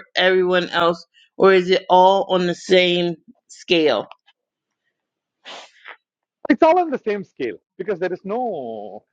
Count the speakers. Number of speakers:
2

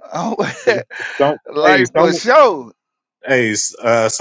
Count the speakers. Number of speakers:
2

